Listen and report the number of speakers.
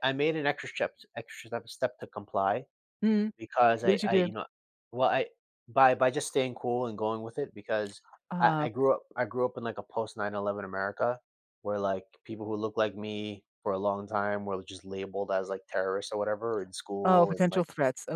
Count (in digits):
2